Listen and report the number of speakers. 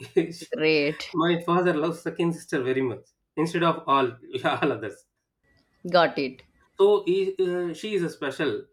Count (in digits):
2